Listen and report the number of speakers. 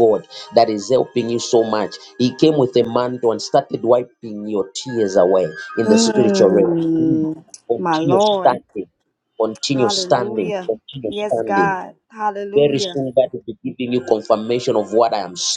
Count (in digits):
2